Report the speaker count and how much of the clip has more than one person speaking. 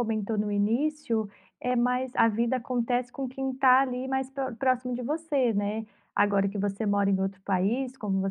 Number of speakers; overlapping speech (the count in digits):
1, no overlap